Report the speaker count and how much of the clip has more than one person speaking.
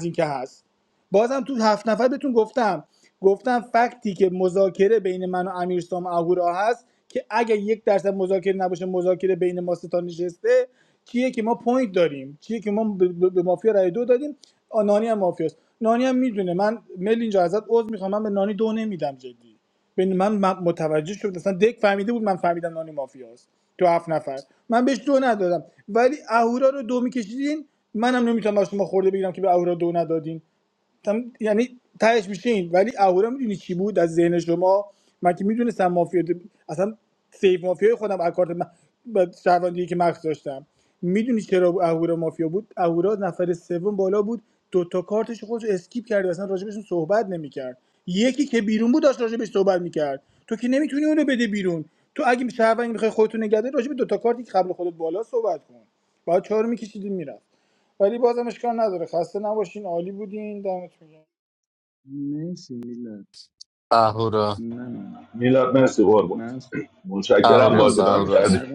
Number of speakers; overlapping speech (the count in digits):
4, about 2%